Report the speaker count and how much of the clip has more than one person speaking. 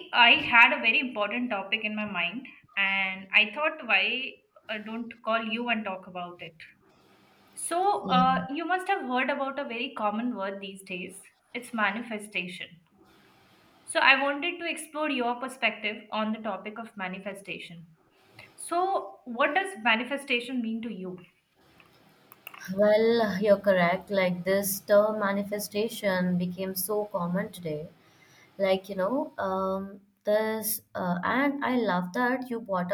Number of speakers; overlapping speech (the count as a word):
two, about 1%